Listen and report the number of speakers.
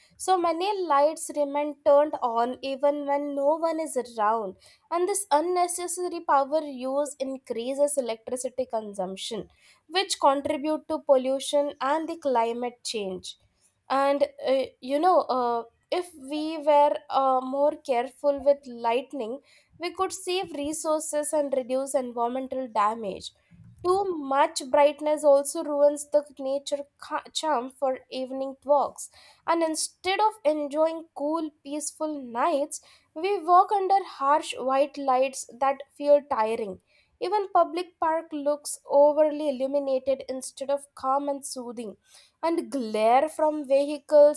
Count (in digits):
1